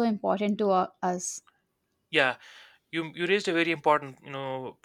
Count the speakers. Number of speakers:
2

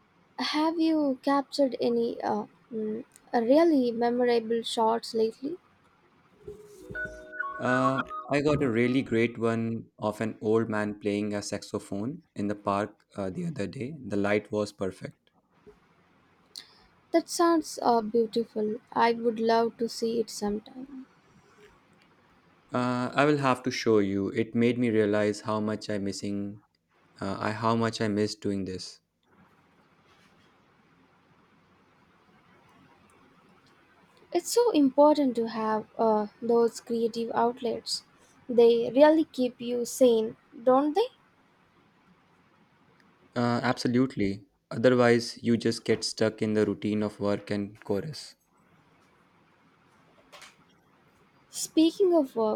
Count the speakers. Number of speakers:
2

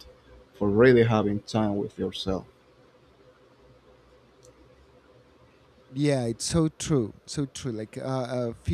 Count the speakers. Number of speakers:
2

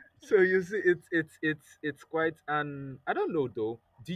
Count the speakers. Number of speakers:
1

